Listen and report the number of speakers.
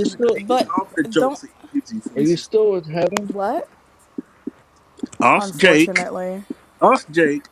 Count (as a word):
three